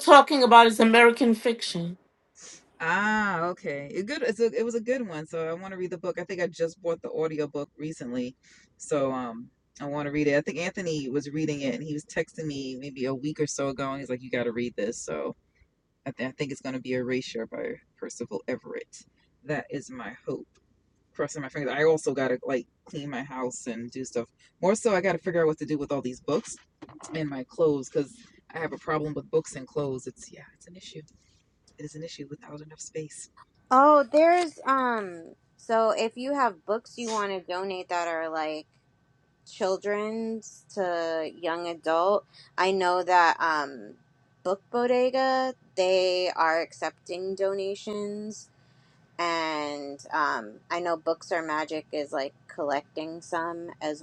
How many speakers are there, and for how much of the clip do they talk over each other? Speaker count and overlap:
3, no overlap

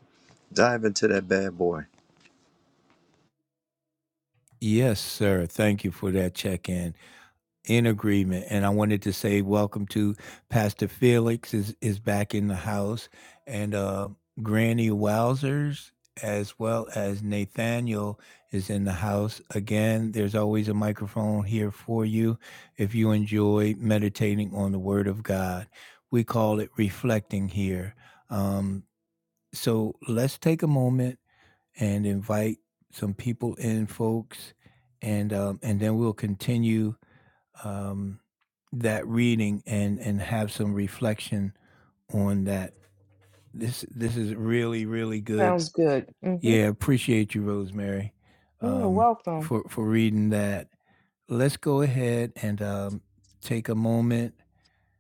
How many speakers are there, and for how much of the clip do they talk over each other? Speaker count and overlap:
3, about 2%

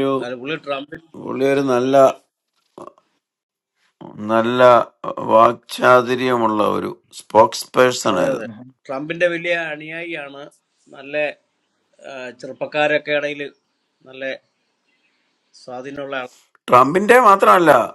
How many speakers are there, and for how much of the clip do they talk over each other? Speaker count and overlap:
2, about 2%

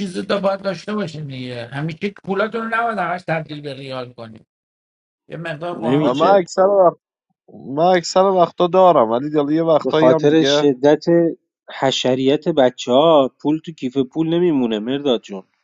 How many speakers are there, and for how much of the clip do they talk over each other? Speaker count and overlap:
3, about 9%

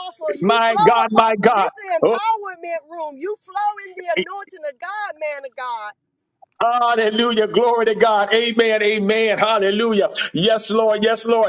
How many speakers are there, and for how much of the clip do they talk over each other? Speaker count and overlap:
2, about 16%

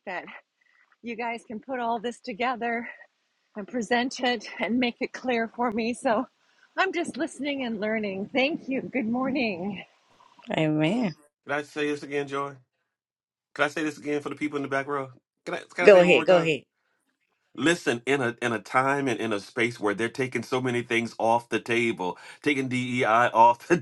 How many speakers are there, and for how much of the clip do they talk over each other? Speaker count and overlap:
3, about 3%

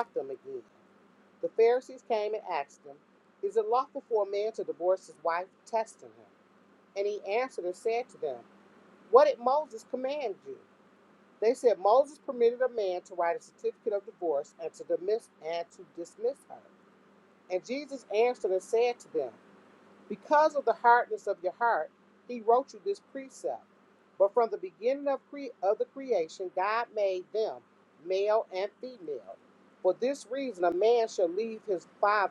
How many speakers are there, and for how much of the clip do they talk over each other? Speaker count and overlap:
1, no overlap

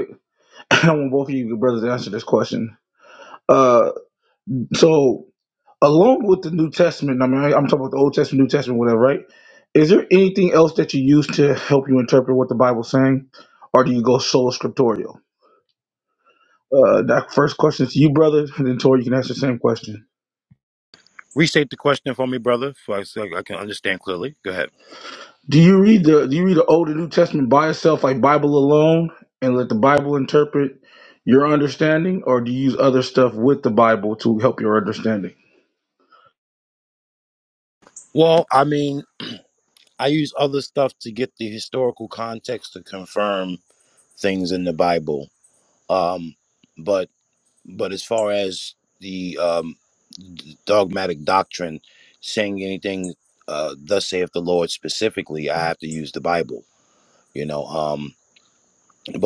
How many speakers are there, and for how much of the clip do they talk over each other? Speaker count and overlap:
2, no overlap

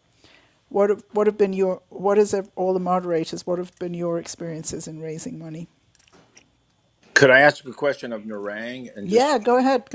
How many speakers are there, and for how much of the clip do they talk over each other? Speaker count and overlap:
2, about 2%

